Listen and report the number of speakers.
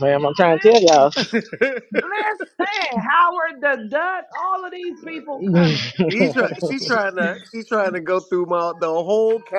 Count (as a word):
three